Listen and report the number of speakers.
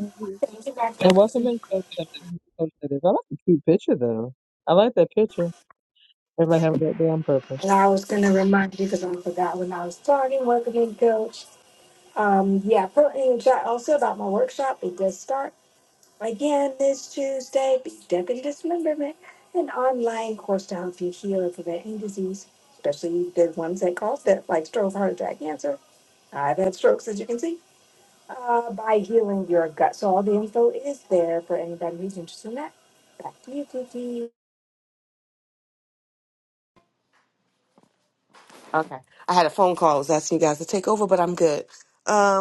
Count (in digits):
3